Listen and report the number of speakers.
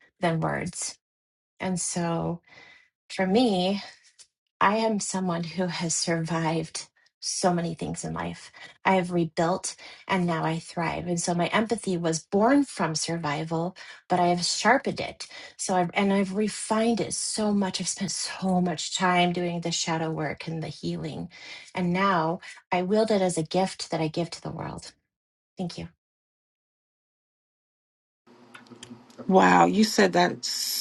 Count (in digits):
2